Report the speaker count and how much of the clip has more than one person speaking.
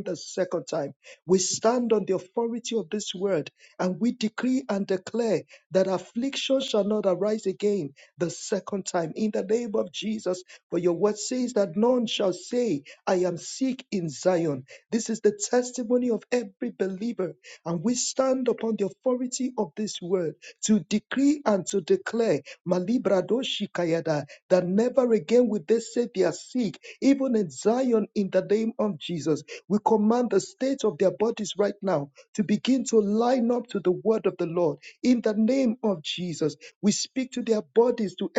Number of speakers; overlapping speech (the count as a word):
one, no overlap